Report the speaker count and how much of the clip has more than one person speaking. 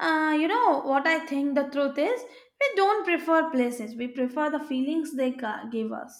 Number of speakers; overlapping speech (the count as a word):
one, no overlap